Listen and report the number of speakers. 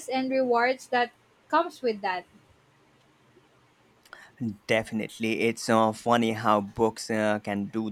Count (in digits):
2